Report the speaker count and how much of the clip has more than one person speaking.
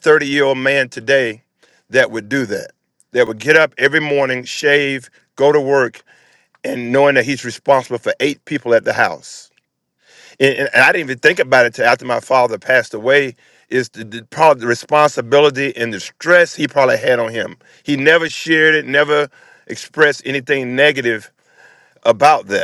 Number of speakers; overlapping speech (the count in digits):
1, no overlap